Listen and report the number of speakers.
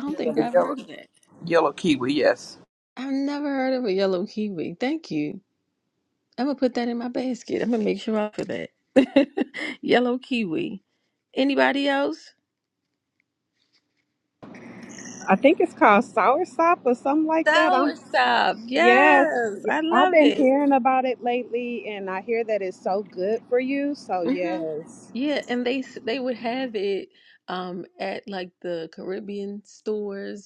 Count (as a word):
three